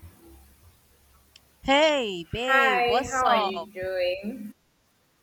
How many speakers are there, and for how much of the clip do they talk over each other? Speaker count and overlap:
2, about 24%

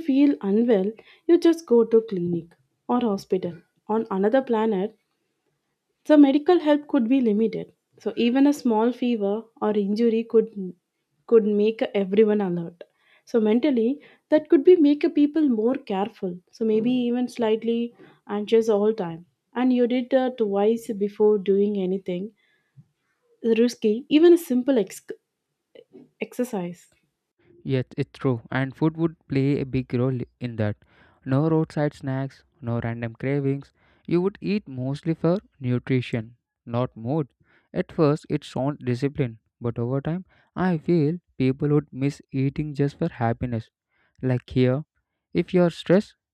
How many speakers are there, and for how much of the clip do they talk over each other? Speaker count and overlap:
2, no overlap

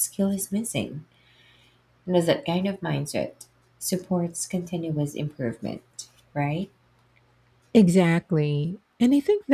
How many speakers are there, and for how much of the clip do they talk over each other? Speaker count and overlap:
2, no overlap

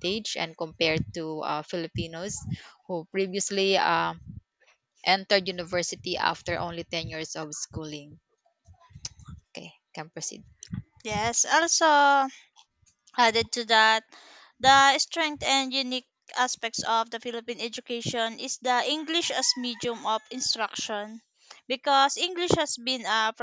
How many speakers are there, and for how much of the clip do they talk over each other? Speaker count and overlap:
2, no overlap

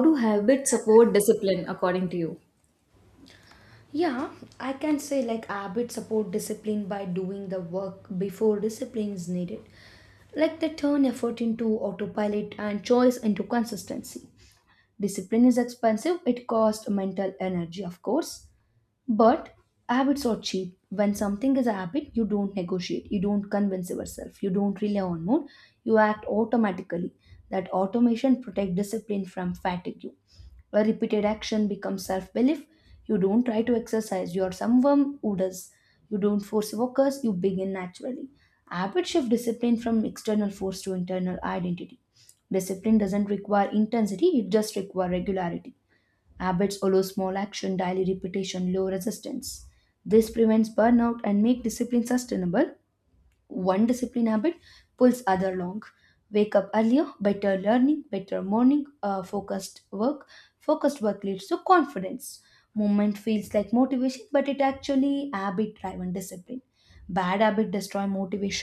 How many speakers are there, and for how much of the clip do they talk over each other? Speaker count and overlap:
2, no overlap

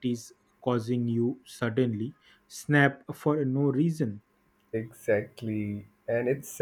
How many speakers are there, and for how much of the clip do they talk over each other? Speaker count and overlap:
2, no overlap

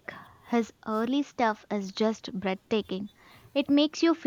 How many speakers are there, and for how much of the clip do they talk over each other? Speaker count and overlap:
1, no overlap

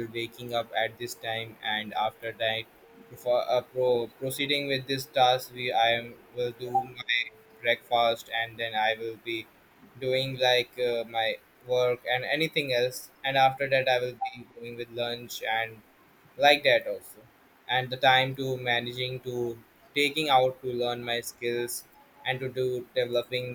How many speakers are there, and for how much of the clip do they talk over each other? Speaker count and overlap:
1, no overlap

